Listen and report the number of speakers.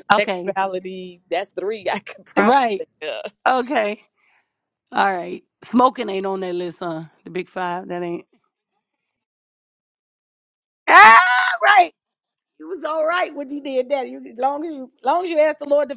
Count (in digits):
2